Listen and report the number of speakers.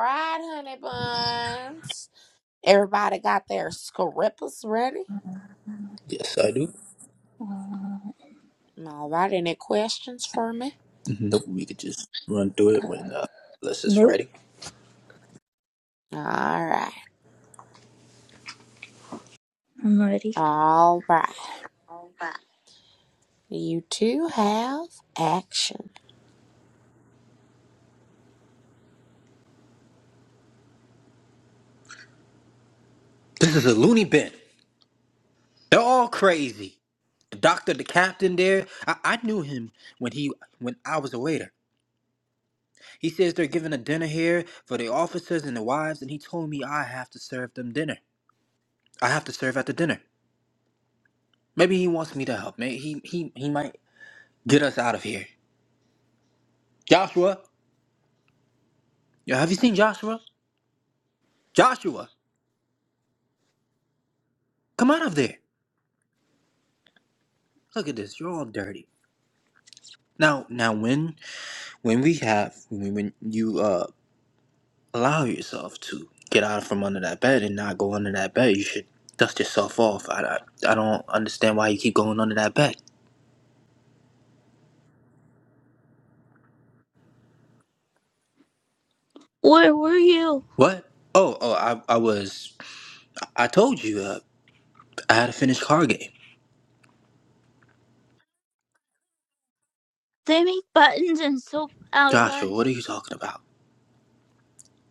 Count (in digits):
3